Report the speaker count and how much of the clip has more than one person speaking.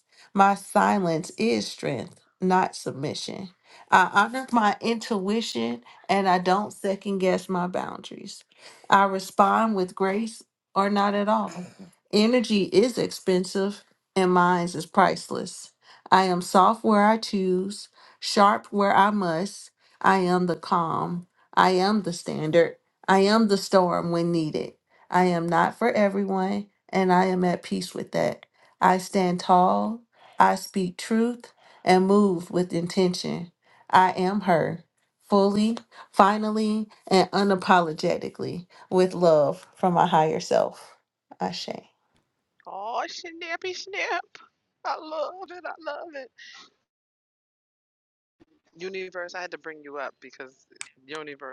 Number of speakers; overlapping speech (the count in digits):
2, no overlap